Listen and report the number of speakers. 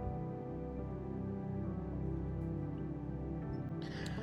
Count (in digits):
0